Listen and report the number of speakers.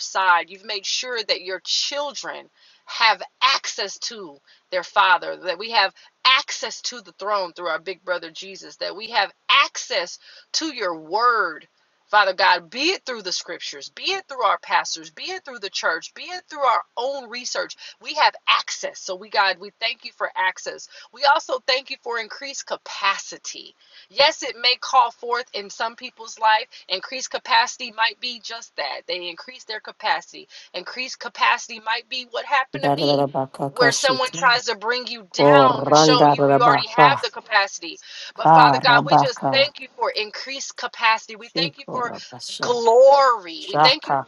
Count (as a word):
two